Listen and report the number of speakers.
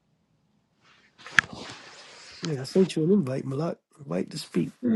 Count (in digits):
1